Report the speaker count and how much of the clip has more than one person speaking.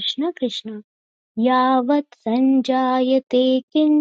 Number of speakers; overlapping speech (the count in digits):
1, no overlap